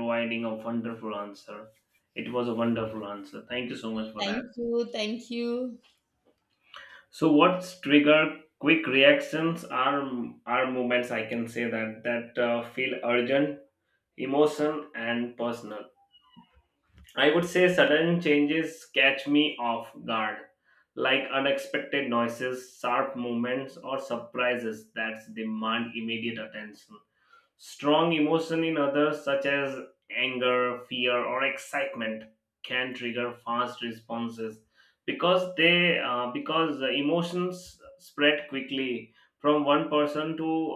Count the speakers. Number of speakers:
2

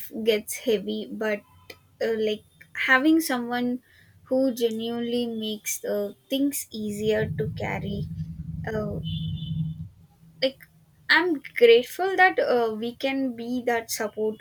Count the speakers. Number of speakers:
1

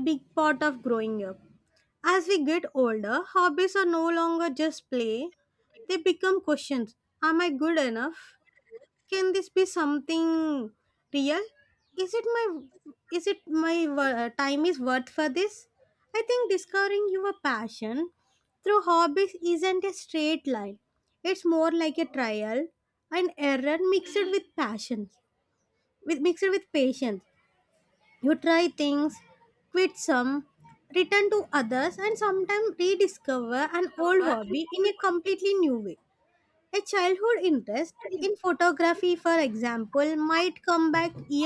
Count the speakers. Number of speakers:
1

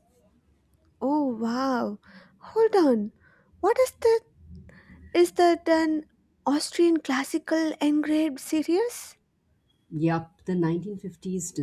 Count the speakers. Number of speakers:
2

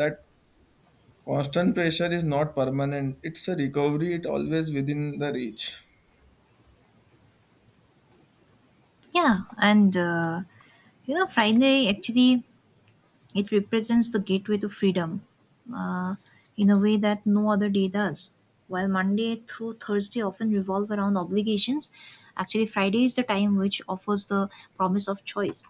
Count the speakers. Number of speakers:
2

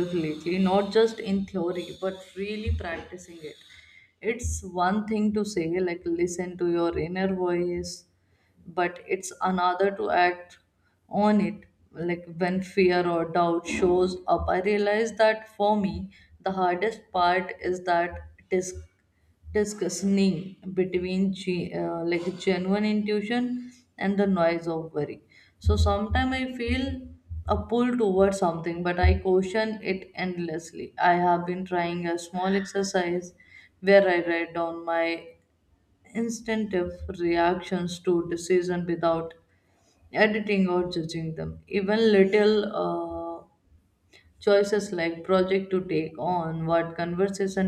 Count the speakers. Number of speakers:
1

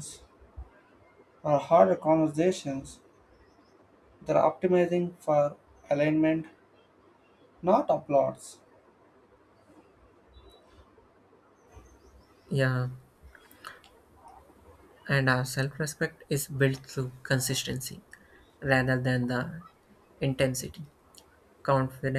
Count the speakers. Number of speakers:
2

